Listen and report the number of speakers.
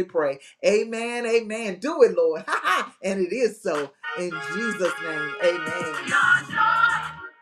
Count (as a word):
one